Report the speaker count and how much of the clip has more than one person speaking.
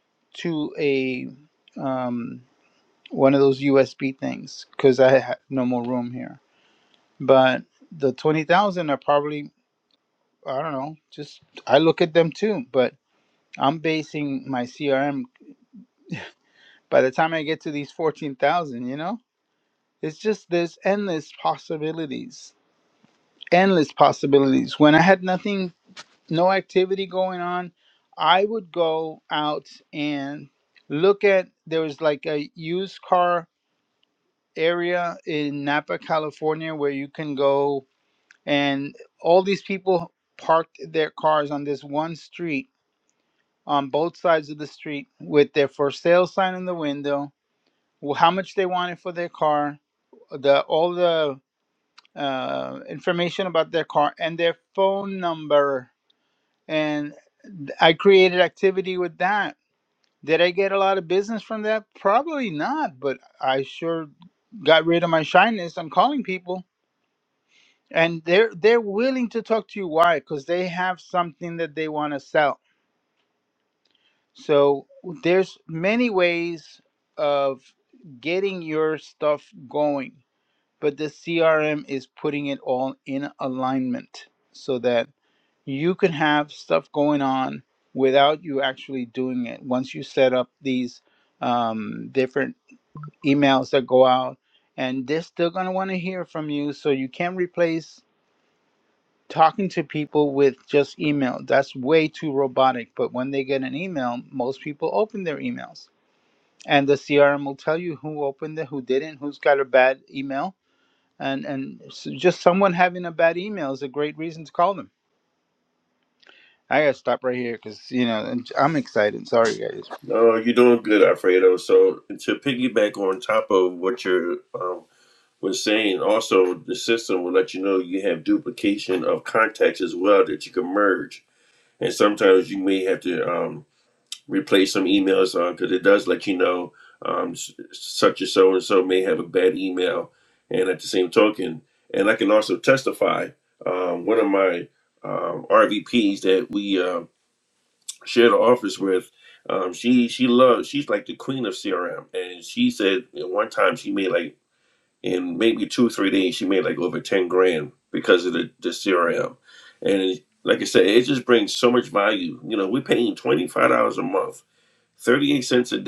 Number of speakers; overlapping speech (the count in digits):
2, no overlap